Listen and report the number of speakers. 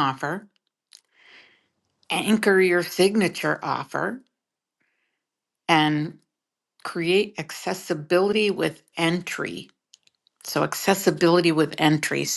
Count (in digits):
1